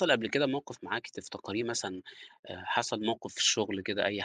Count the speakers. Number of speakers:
1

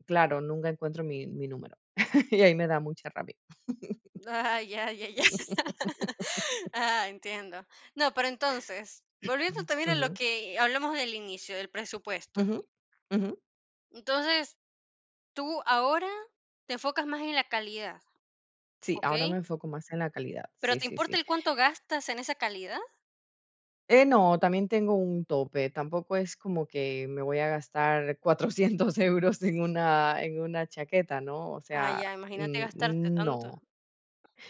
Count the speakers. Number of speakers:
2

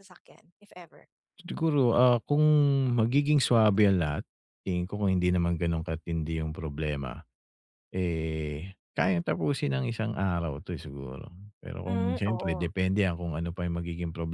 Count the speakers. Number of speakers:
2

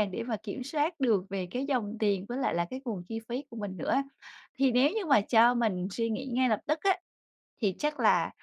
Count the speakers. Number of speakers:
1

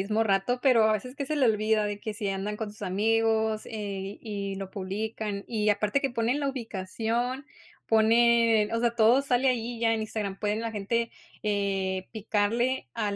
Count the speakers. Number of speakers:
1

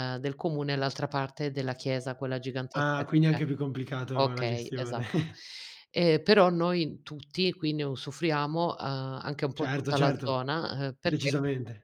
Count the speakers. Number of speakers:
2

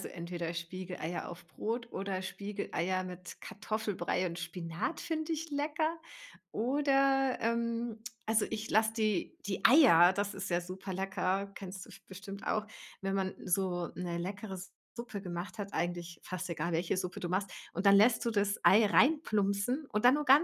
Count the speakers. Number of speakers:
1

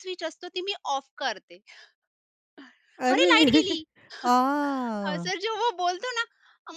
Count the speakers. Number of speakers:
2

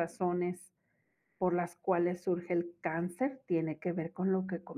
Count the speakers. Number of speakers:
1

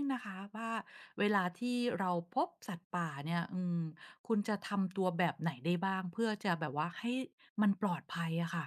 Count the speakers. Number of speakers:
1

